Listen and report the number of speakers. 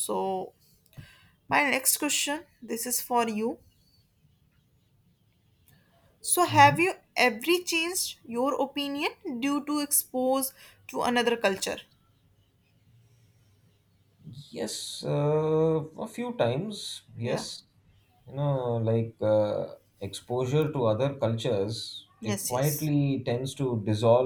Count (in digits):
2